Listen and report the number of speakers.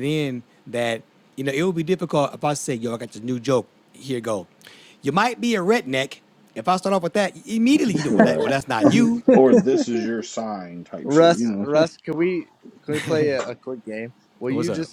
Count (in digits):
3